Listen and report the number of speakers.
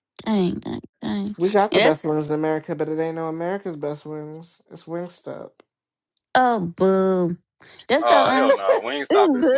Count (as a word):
three